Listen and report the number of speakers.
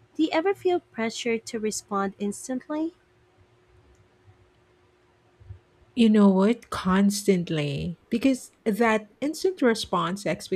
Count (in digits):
2